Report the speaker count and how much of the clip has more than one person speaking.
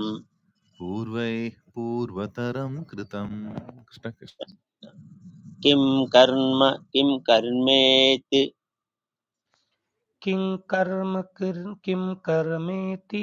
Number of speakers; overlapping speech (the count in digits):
3, no overlap